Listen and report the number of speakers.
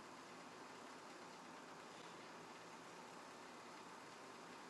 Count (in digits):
0